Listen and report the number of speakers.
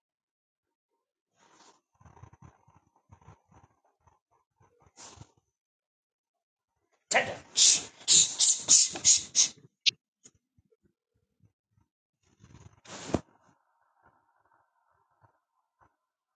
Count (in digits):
0